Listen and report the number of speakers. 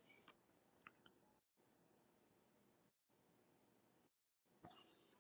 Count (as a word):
zero